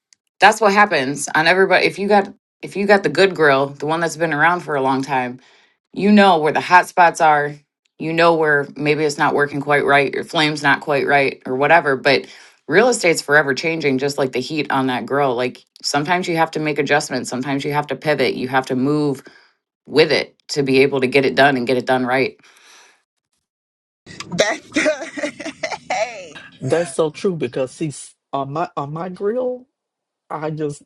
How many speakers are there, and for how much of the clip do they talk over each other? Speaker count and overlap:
three, no overlap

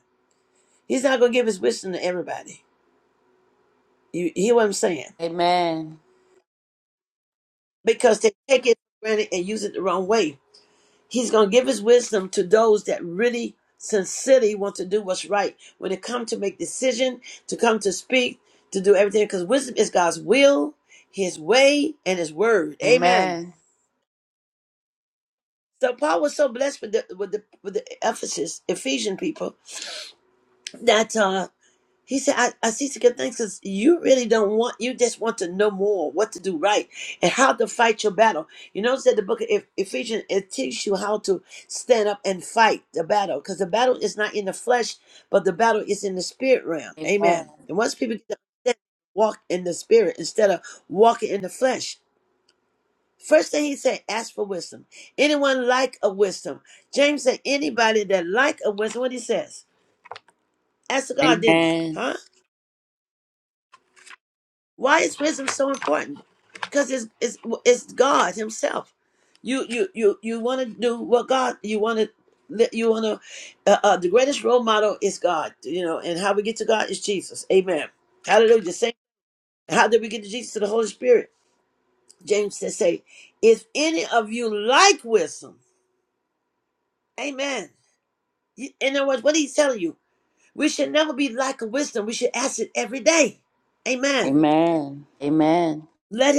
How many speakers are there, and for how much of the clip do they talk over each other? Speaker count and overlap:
two, about 2%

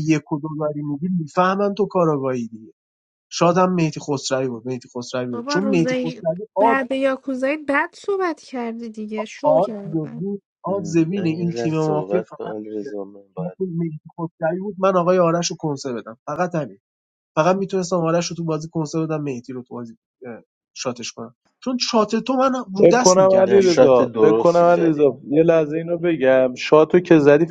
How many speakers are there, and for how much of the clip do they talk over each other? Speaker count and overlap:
four, about 21%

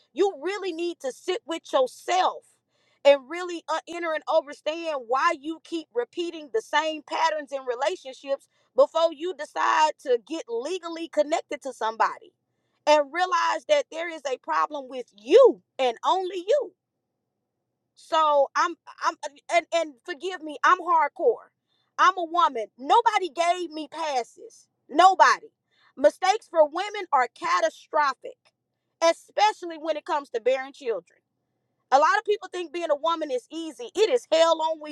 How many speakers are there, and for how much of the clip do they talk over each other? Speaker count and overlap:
one, no overlap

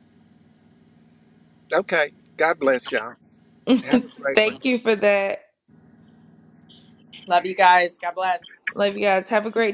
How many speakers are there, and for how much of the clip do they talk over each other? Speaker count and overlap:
three, about 2%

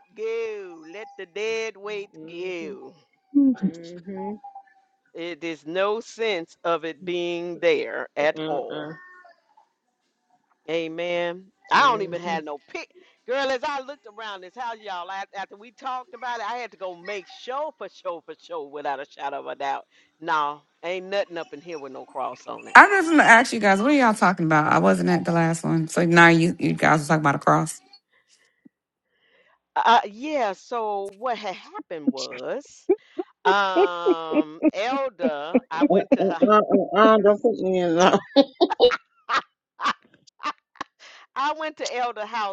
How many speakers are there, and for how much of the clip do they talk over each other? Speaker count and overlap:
four, about 5%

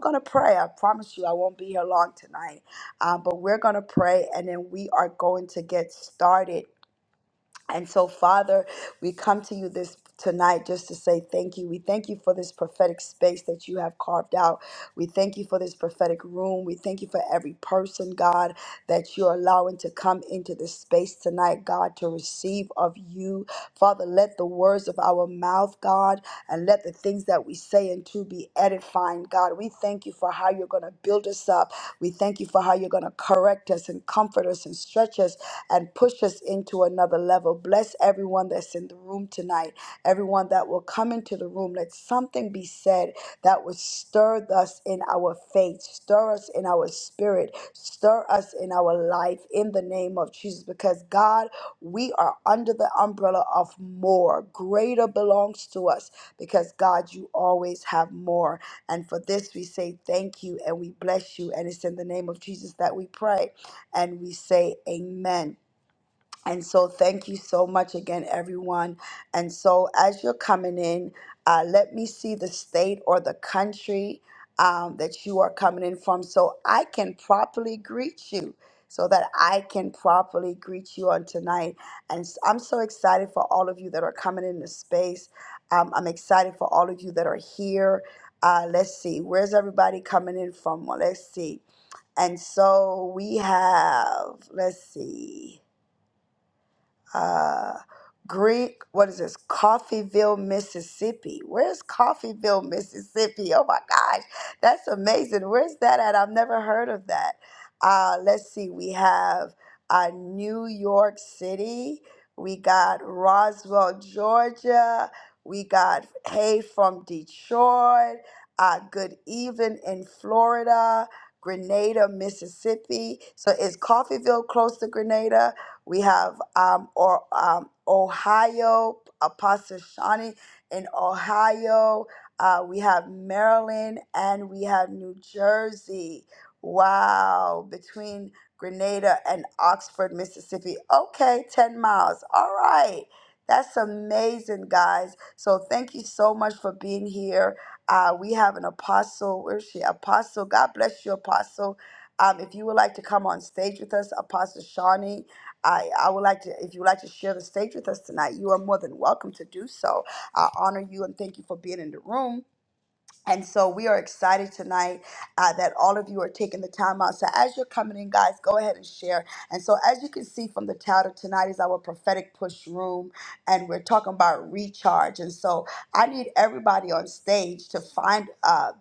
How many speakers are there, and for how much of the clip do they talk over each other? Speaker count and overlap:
one, no overlap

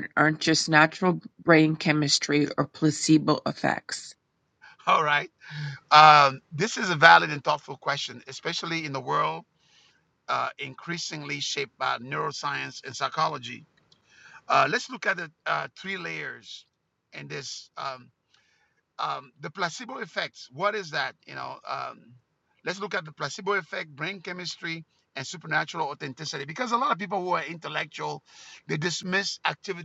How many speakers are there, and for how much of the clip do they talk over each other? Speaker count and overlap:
two, no overlap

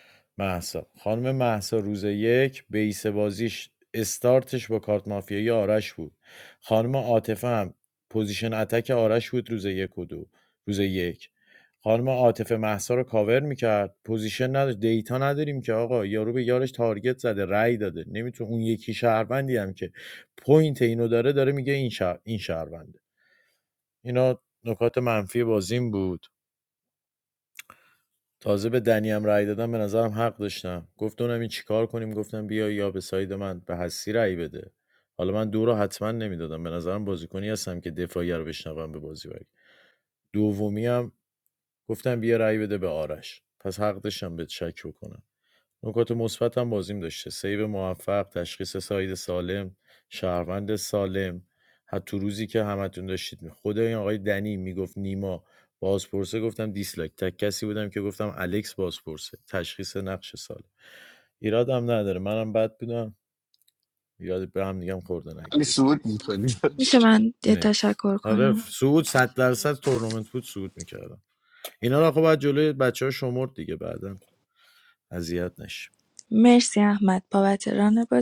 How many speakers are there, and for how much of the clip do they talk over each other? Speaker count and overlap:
three, about 1%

